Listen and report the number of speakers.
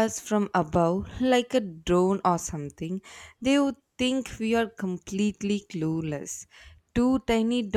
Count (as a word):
one